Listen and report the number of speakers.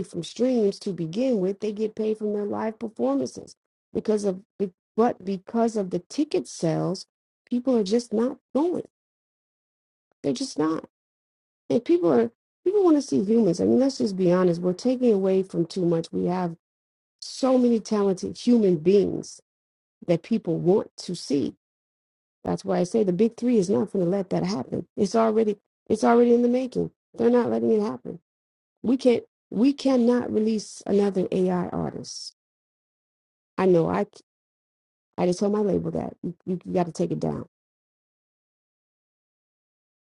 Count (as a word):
one